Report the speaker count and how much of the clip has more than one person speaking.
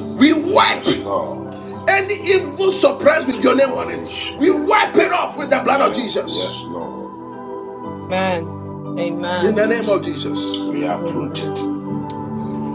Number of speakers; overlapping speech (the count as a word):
three, about 30%